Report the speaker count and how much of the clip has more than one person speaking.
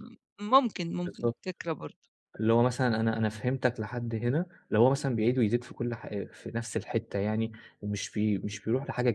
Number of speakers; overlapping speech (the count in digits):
2, about 3%